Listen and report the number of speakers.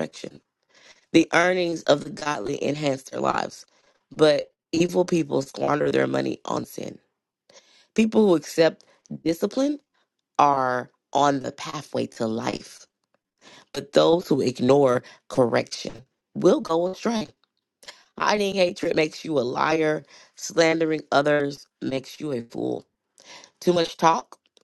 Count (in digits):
1